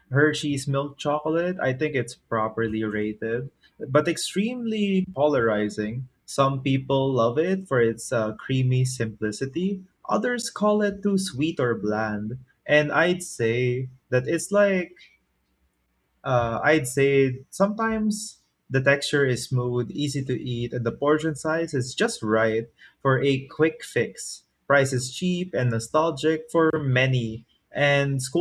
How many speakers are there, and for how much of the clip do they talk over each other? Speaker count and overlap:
1, no overlap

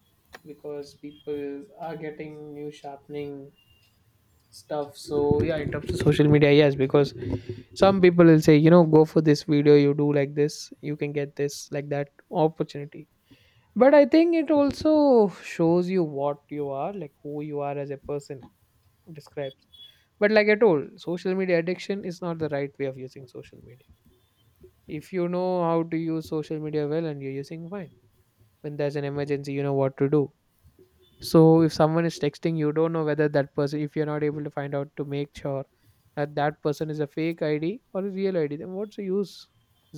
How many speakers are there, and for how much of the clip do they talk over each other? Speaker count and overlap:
1, no overlap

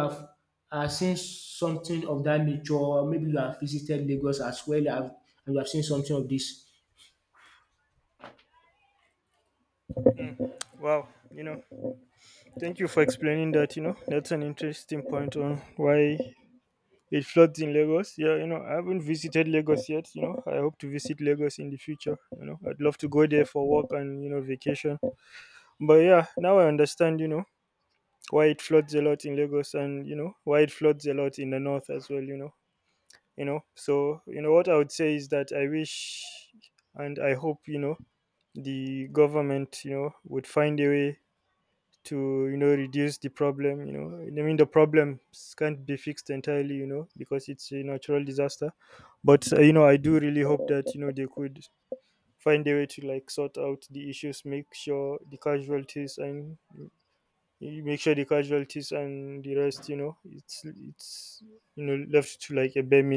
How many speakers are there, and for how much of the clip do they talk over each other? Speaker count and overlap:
2, no overlap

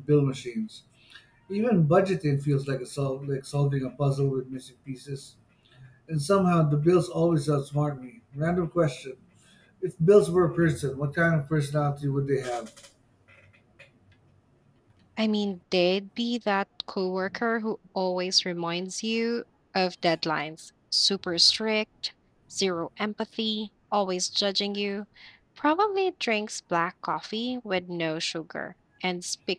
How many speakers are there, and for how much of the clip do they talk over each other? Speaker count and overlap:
2, no overlap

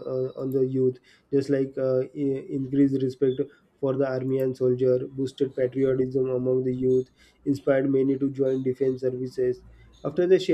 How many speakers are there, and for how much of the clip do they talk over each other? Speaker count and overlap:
1, no overlap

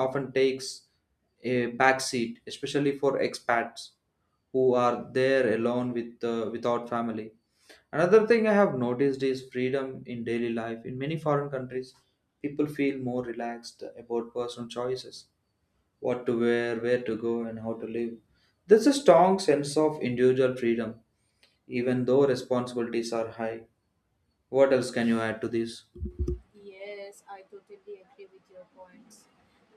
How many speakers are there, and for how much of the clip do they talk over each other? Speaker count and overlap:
2, no overlap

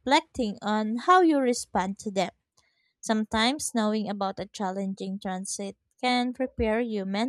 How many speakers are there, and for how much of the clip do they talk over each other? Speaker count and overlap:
1, no overlap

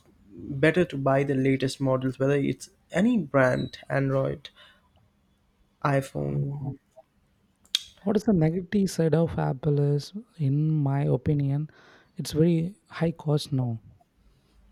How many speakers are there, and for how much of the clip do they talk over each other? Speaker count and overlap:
2, about 1%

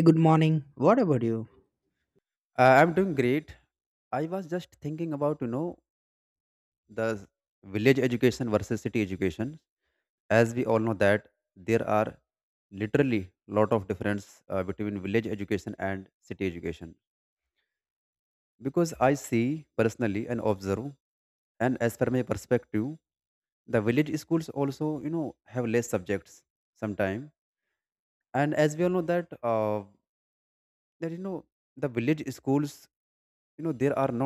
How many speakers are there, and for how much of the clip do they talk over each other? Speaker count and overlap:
2, no overlap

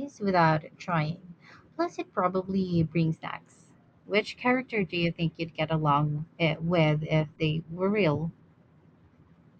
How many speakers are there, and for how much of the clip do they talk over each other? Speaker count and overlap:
1, no overlap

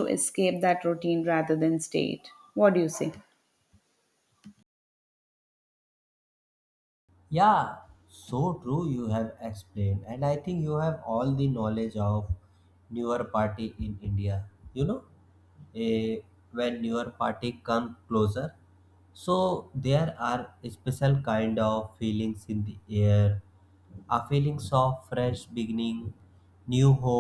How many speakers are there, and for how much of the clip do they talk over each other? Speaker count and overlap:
2, no overlap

